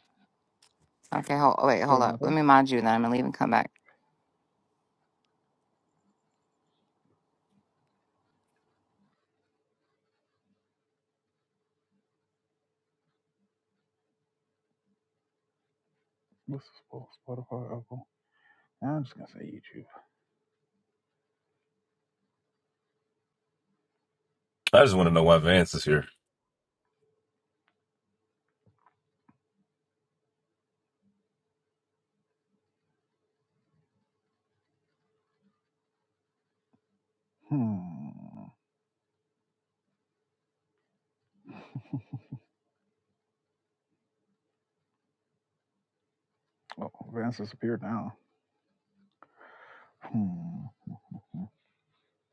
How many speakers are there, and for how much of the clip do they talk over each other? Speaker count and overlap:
three, about 1%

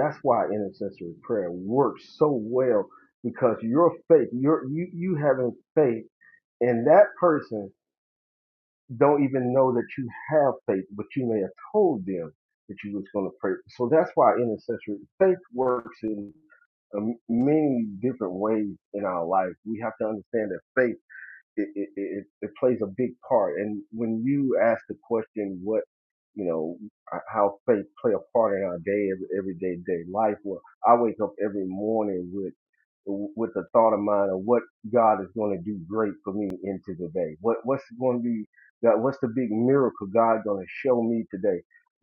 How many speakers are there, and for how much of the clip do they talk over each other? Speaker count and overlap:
one, no overlap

